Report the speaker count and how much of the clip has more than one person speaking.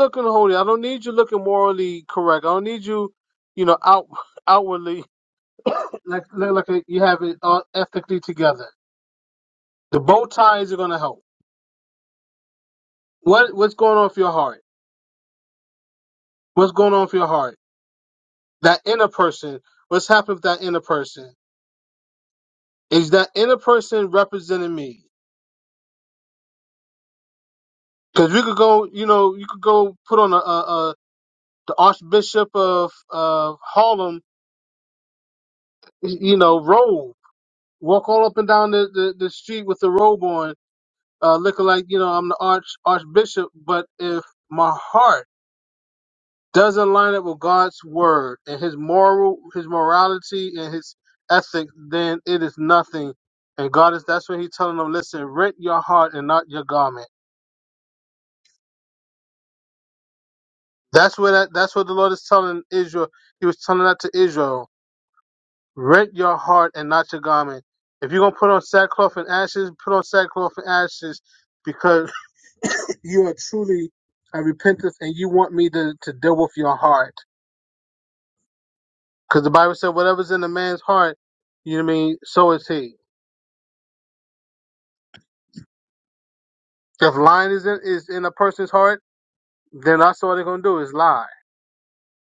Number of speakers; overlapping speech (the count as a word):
one, no overlap